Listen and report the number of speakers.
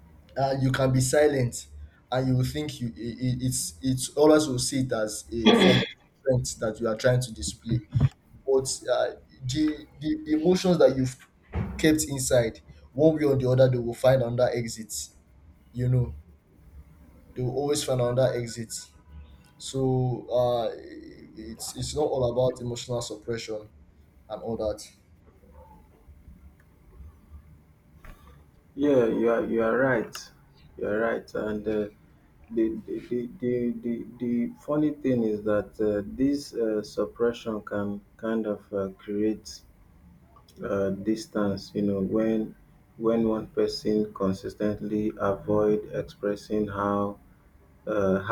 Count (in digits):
2